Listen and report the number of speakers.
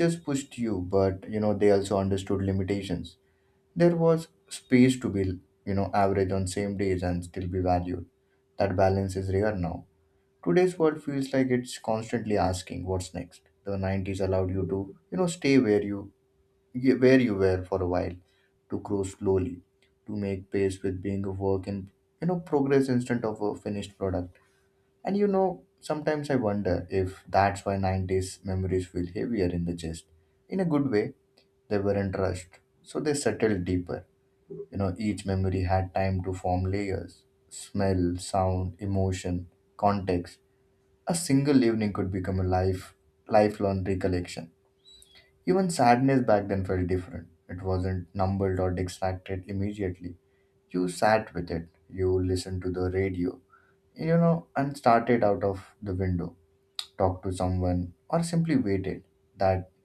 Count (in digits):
1